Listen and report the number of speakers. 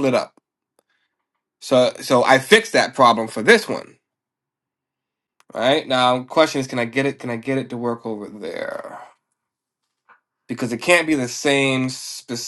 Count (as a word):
one